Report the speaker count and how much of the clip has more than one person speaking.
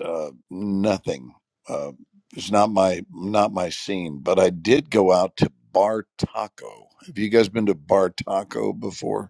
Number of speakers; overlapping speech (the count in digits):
1, no overlap